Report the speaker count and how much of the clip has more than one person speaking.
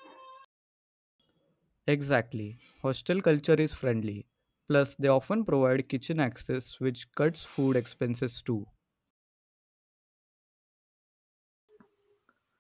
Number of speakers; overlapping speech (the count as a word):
one, no overlap